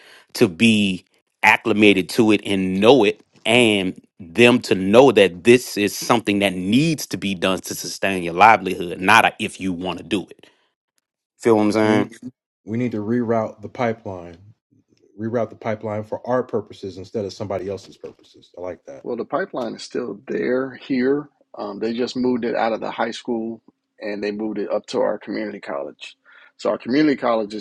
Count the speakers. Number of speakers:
three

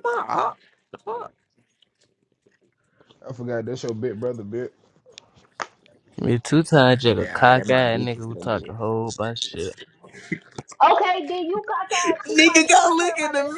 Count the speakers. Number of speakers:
four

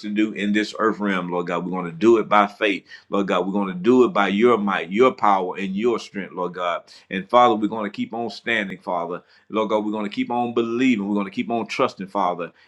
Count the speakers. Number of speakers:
one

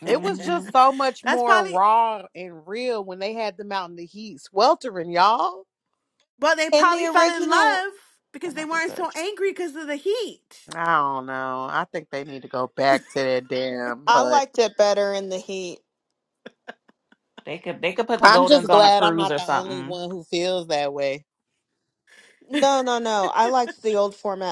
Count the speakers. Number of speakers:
four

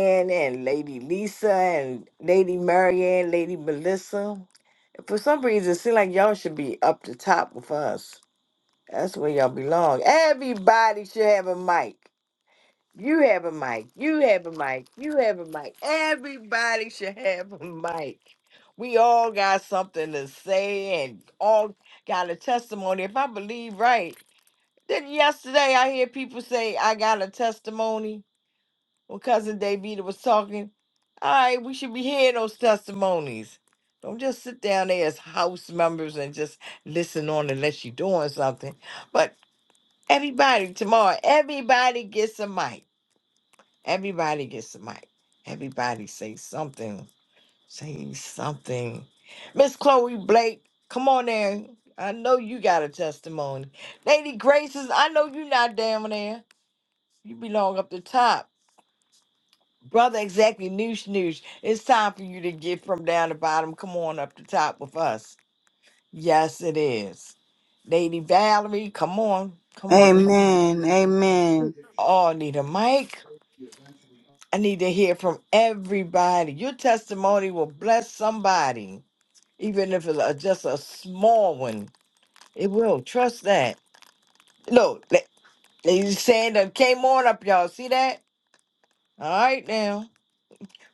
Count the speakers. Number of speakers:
two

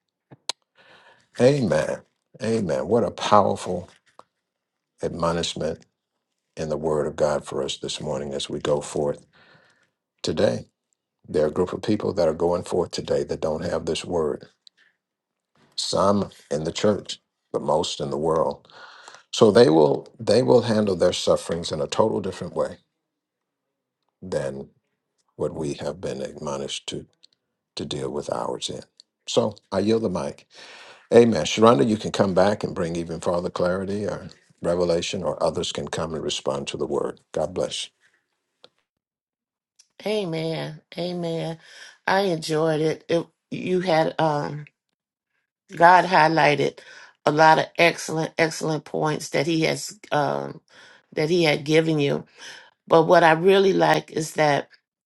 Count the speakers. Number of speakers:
two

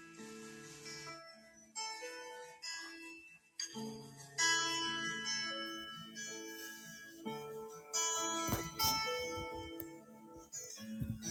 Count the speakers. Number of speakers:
zero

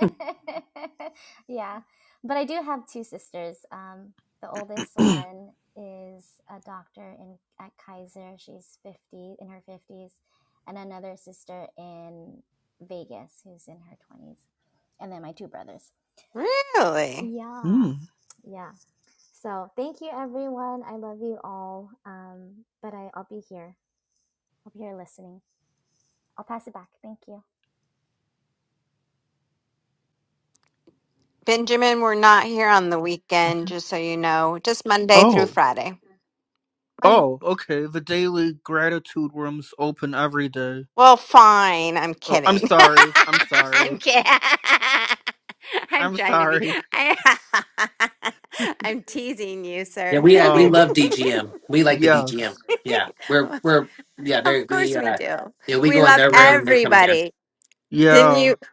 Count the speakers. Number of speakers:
four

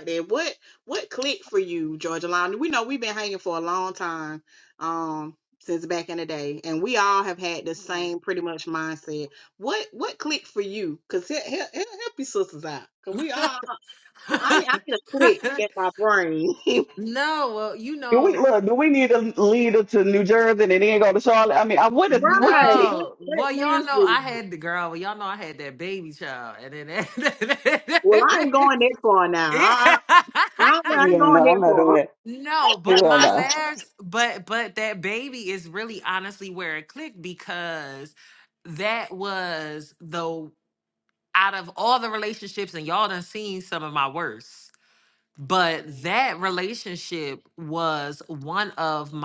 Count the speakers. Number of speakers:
three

